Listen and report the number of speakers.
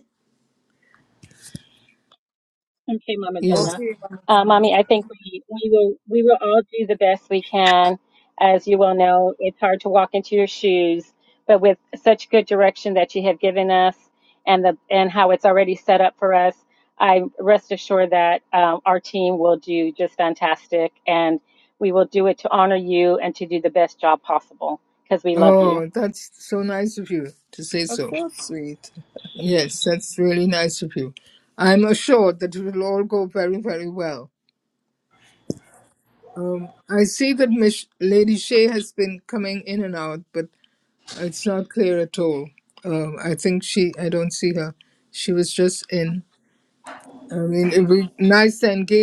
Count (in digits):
3